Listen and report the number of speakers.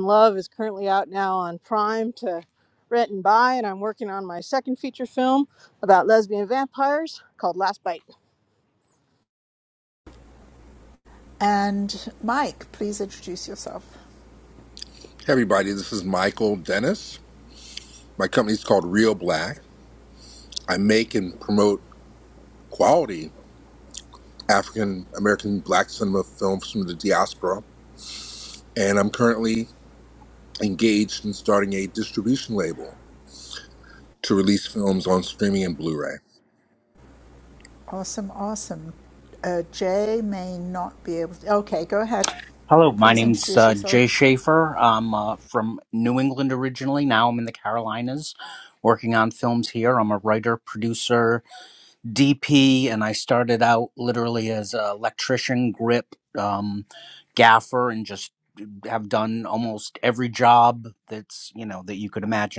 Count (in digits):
4